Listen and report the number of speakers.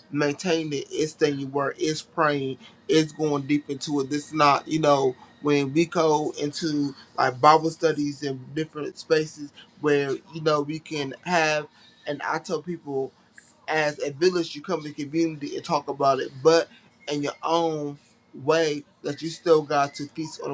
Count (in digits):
1